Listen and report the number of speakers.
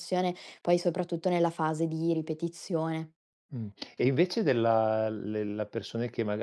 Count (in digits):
2